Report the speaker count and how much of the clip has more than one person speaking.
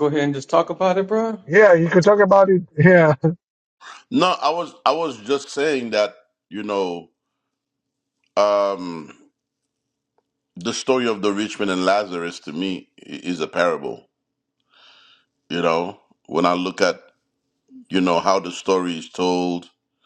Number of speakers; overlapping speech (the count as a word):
three, no overlap